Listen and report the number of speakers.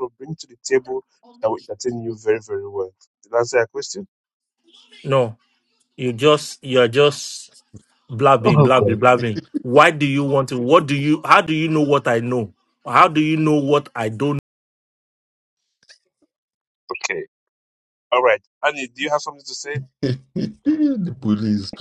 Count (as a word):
three